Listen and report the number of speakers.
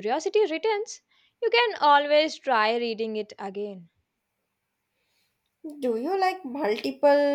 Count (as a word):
two